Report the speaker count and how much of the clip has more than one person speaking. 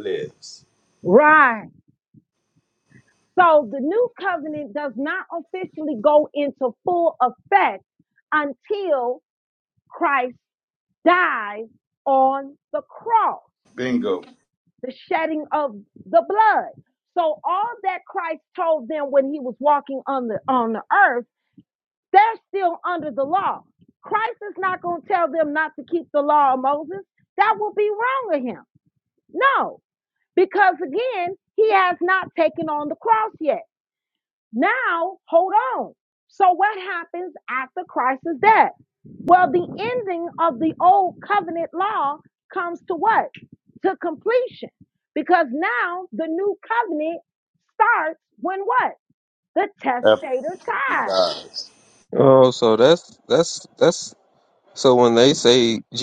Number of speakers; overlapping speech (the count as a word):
three, about 1%